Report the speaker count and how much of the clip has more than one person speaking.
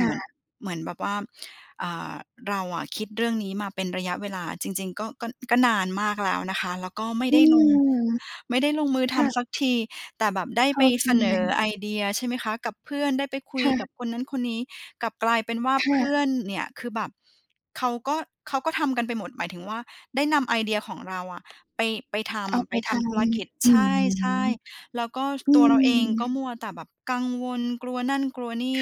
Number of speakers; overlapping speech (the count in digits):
2, about 11%